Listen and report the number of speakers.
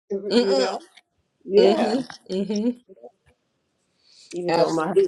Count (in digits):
2